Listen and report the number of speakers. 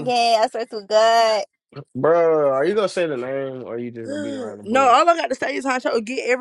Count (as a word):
three